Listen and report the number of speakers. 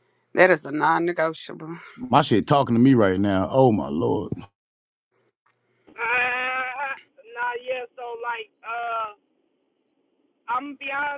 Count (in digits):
3